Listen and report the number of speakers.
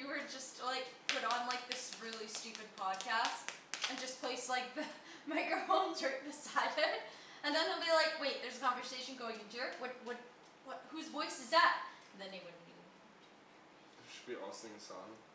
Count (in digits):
2